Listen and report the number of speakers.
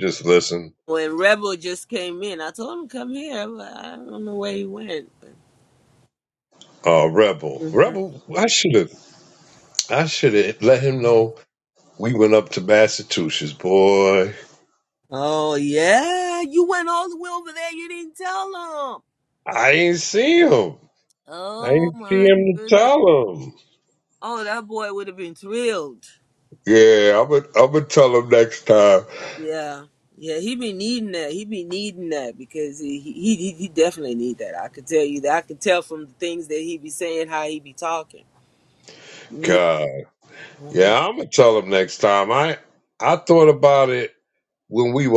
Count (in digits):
2